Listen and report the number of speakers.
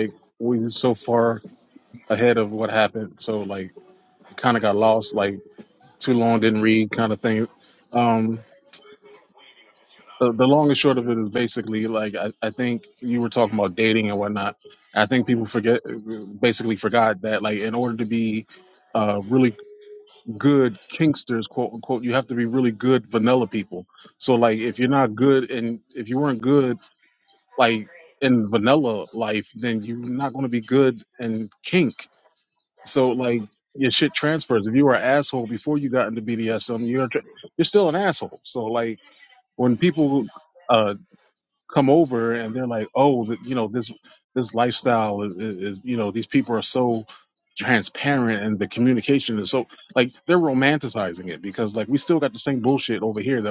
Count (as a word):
one